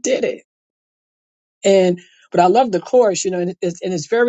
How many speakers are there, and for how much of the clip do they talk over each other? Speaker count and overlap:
1, no overlap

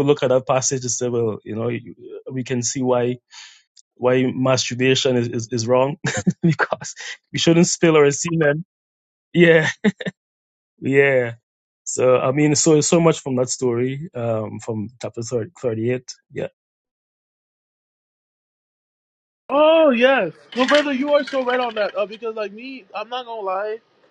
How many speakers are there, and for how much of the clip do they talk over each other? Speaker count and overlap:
2, no overlap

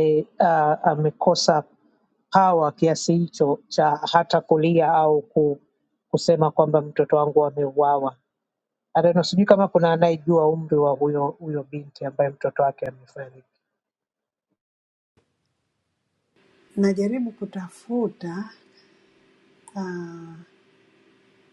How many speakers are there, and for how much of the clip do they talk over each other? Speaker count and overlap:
2, no overlap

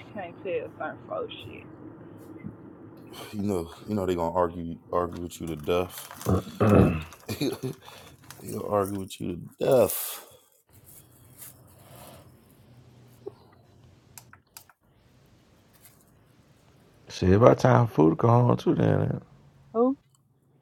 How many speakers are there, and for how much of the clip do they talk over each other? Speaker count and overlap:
3, no overlap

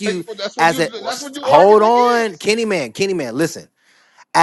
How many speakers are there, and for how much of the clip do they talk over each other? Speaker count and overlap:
2, about 30%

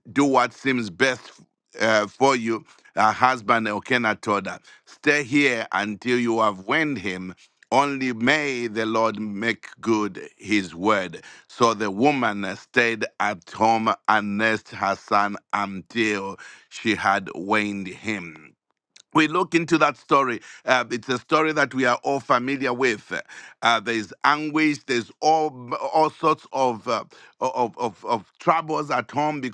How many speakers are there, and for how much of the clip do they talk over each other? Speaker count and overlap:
1, no overlap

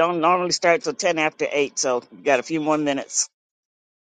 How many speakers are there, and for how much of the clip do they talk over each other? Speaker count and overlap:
1, no overlap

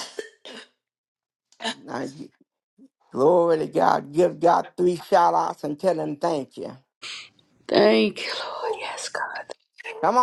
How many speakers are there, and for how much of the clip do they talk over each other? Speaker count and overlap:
2, no overlap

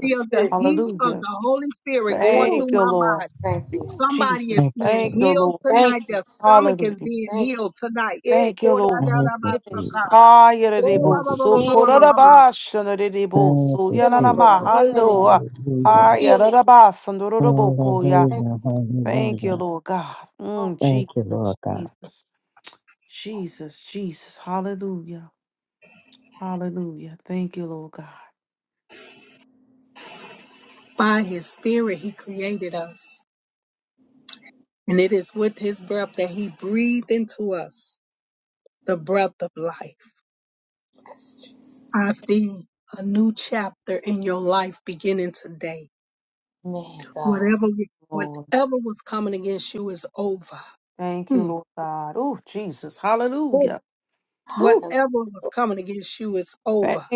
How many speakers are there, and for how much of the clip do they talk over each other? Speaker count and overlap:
4, about 27%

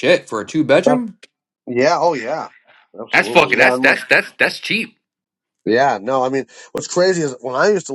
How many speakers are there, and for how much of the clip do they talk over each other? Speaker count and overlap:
2, about 13%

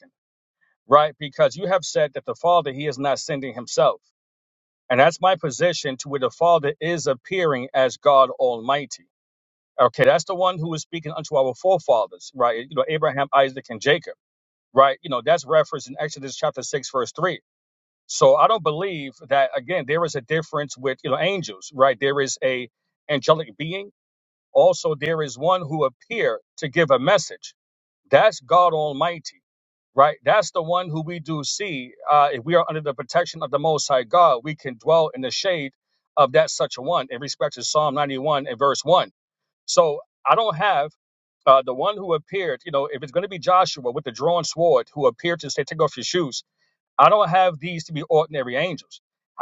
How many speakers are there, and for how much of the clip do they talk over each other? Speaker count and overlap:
1, no overlap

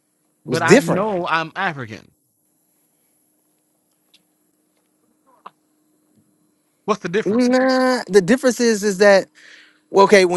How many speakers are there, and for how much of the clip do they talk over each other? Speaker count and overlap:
2, about 6%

